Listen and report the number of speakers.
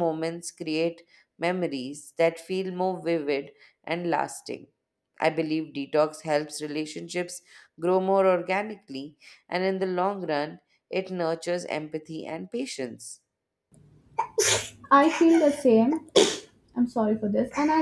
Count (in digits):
2